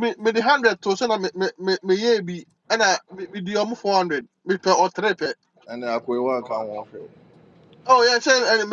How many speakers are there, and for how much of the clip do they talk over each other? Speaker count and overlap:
two, no overlap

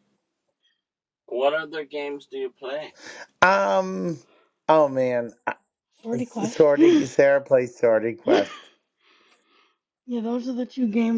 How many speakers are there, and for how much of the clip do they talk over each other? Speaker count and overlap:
three, about 4%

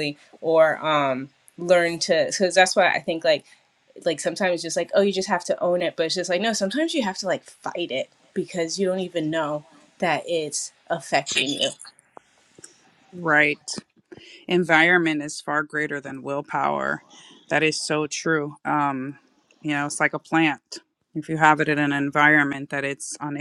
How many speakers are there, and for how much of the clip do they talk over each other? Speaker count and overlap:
two, no overlap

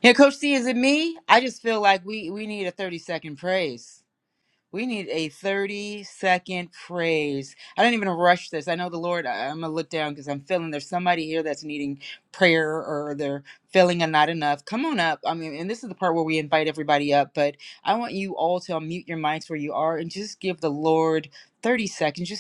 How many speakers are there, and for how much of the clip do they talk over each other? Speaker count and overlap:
one, no overlap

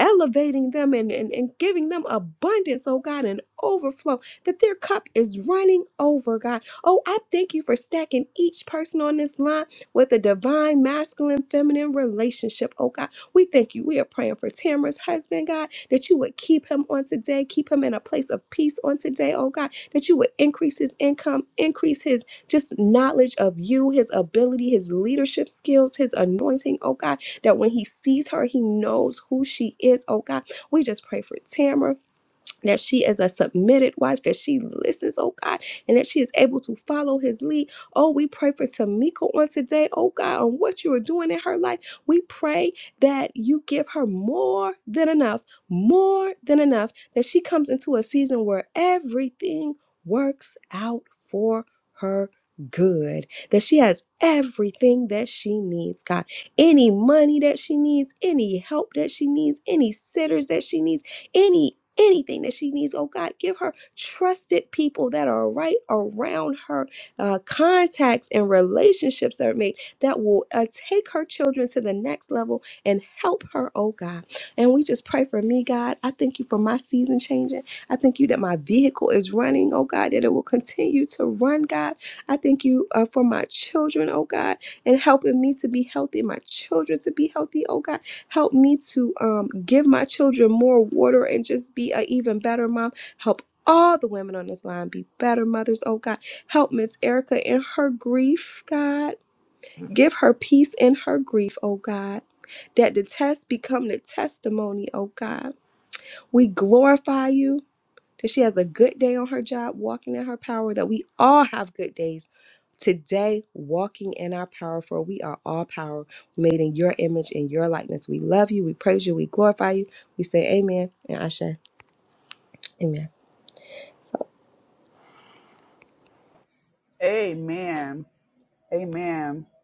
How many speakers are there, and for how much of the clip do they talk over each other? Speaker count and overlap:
two, no overlap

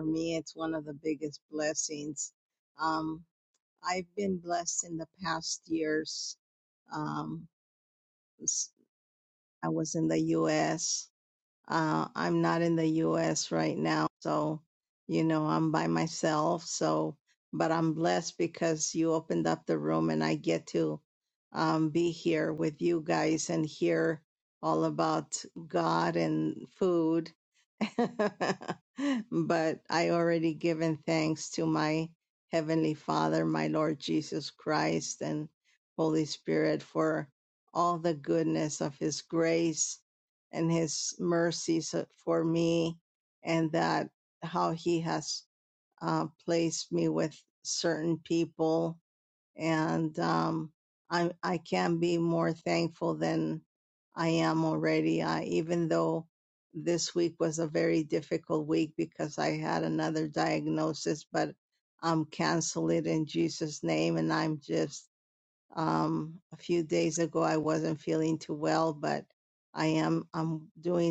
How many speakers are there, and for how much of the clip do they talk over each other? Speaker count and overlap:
one, no overlap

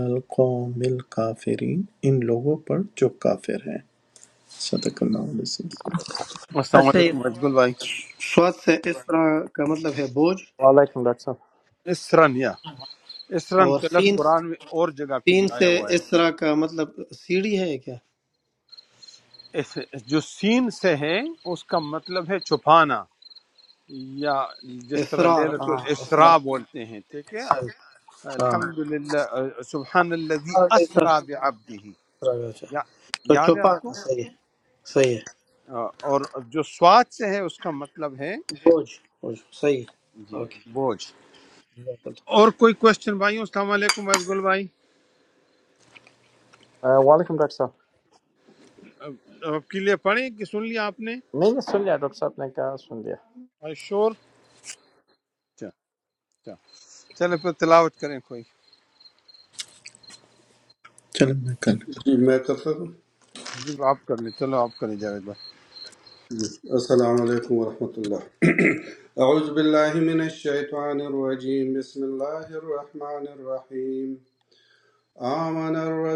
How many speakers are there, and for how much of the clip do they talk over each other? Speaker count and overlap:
five, about 6%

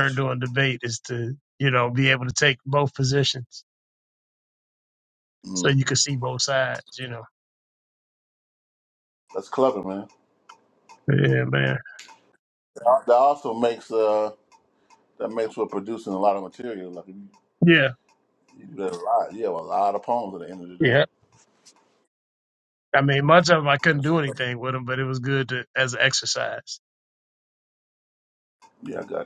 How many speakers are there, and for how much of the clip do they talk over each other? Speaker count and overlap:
two, about 3%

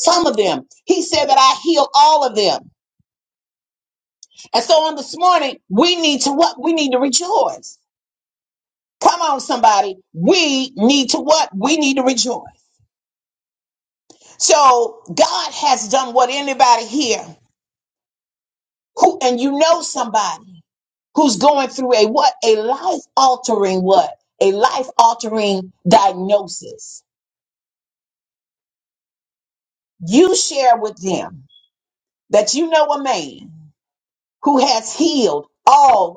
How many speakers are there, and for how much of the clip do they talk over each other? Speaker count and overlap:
one, no overlap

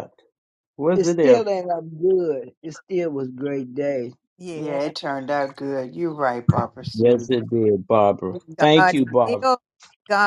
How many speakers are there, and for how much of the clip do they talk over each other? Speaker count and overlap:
four, about 19%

